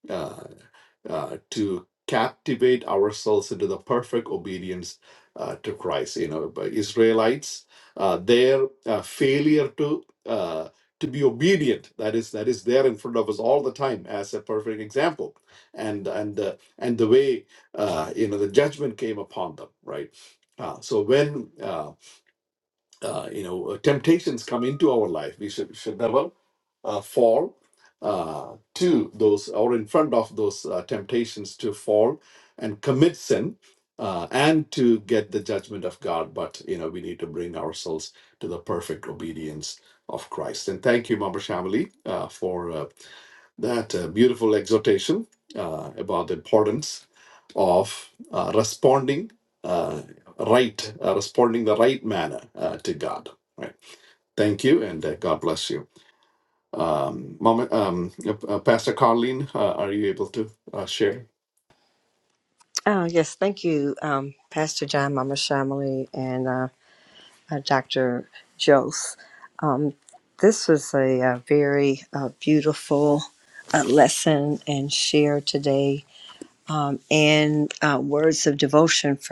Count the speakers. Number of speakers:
2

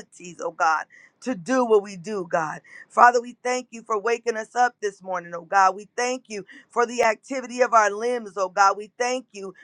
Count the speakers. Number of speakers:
1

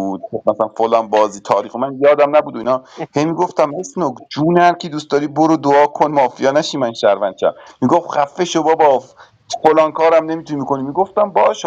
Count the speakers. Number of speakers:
1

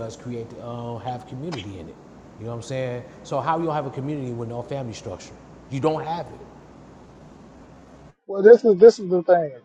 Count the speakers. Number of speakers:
2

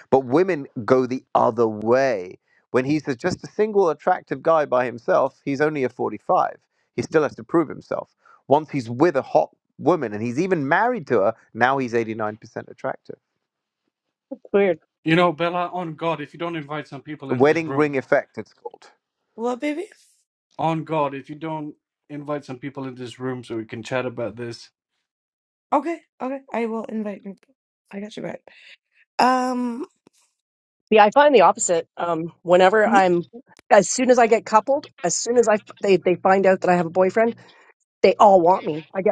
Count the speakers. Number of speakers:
4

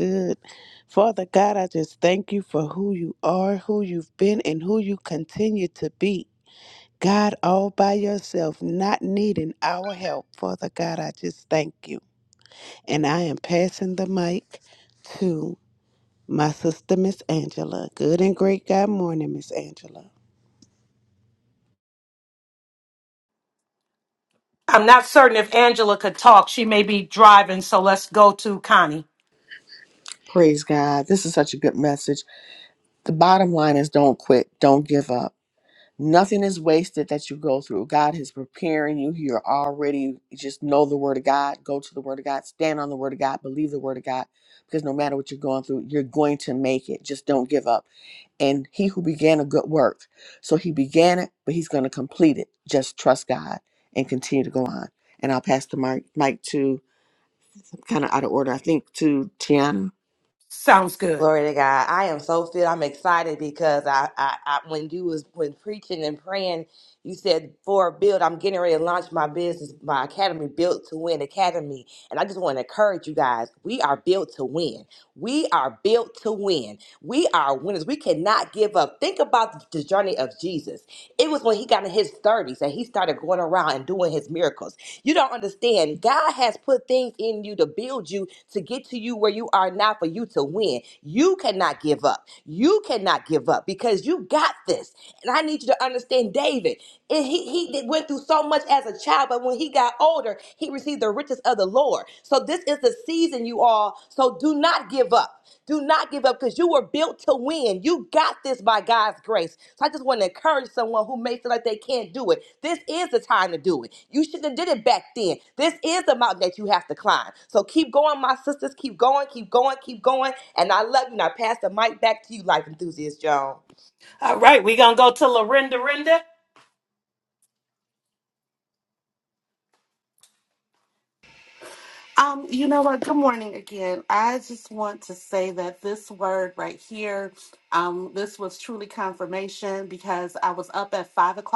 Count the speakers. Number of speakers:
5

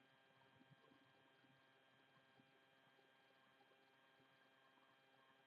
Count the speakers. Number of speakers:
0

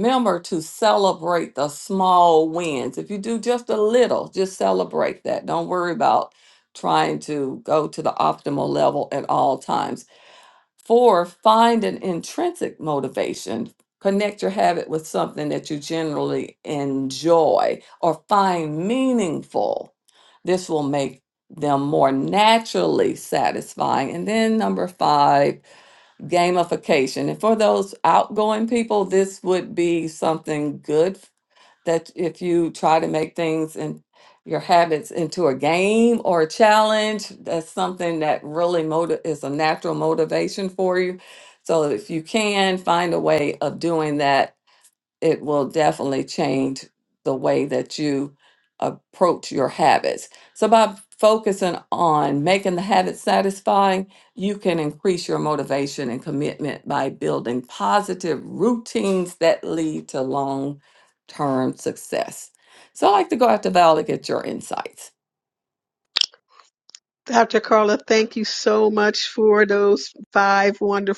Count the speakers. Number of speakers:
2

